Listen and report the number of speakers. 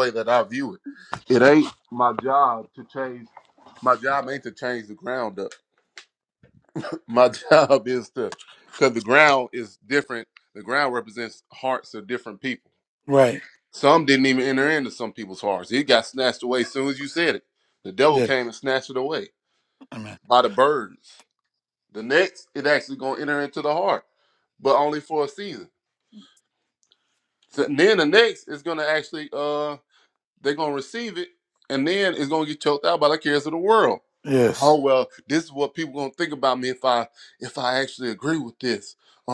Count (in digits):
2